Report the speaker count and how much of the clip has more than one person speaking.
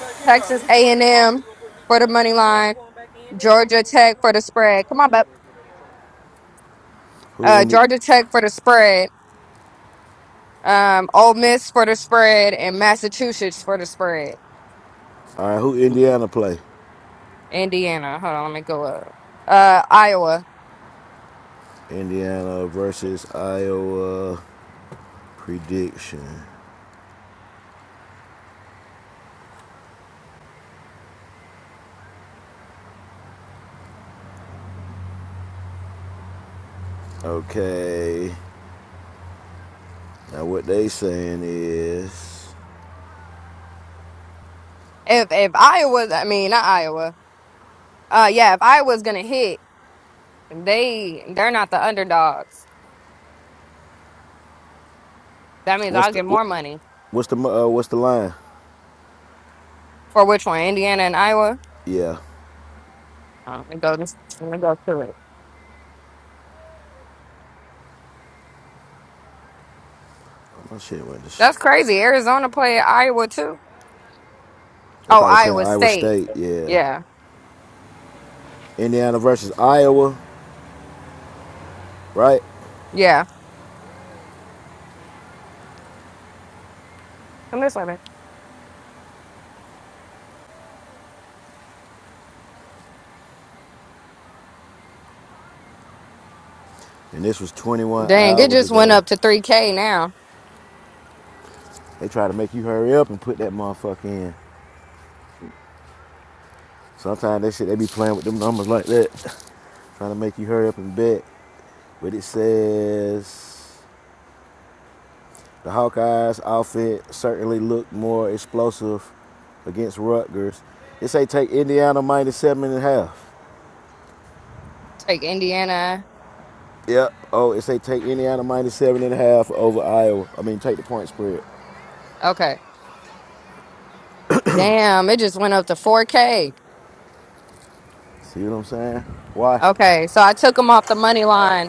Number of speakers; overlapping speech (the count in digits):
2, about 2%